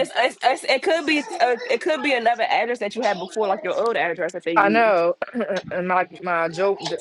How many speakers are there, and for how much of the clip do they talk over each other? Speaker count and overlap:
2, about 6%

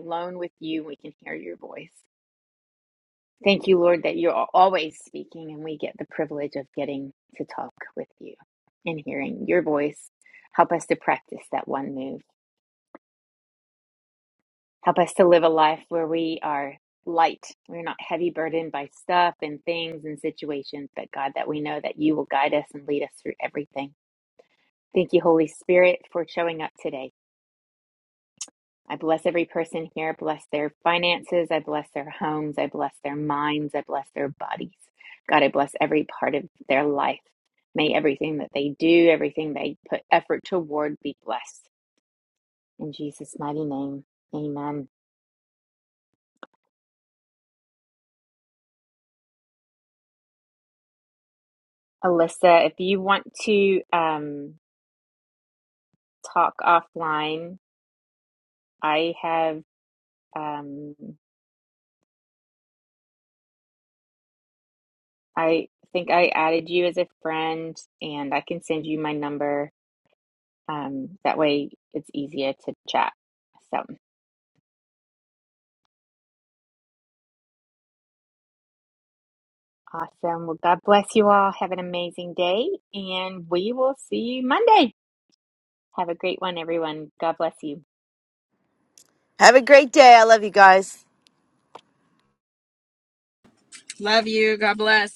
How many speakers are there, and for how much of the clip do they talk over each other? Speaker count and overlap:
3, no overlap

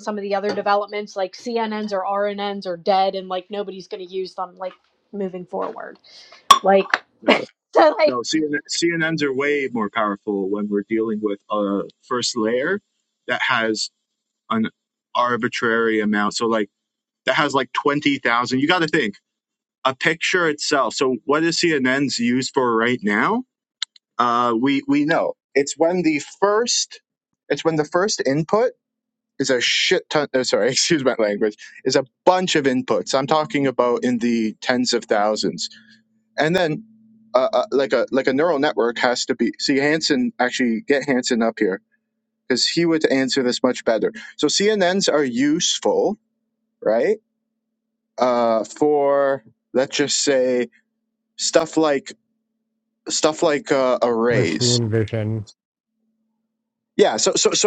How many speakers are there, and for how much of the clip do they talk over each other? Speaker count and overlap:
3, about 1%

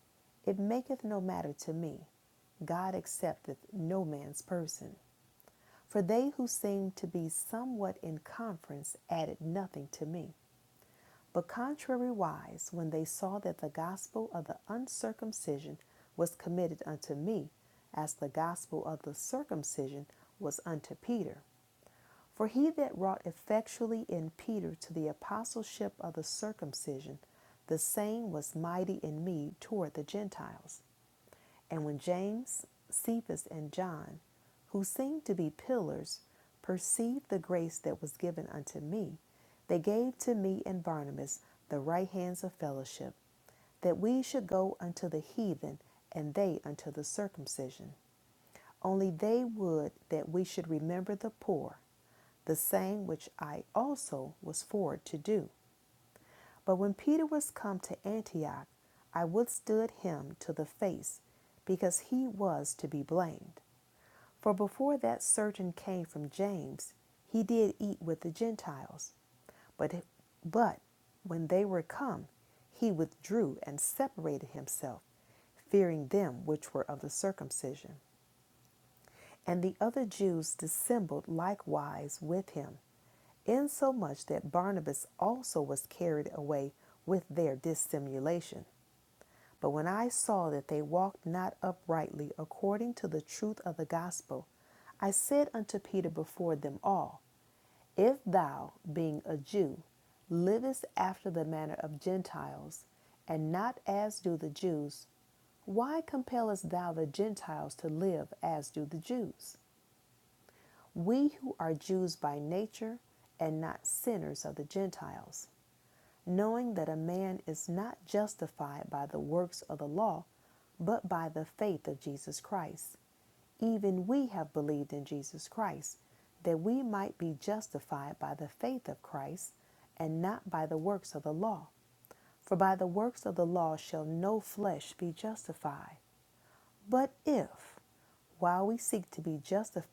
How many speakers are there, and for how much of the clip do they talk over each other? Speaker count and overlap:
1, no overlap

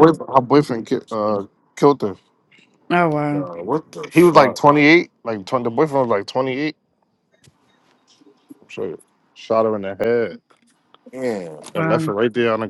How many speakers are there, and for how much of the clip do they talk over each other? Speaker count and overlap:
3, about 9%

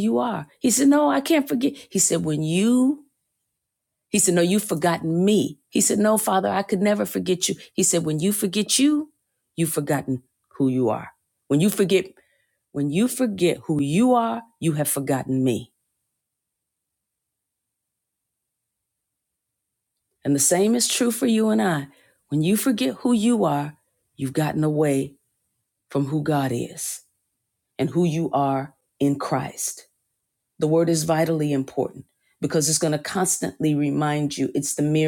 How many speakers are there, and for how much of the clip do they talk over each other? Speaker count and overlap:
1, no overlap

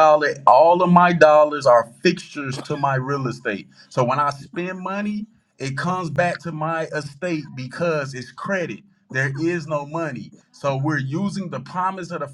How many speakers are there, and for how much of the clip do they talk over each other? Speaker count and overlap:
1, no overlap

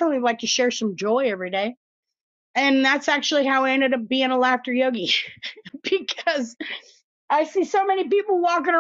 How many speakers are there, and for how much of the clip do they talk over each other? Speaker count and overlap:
1, no overlap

